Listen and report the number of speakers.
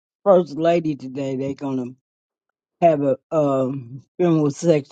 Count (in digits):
1